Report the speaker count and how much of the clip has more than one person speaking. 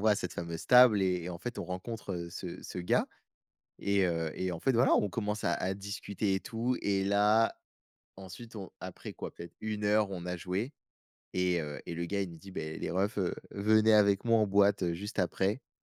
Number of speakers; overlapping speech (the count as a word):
one, no overlap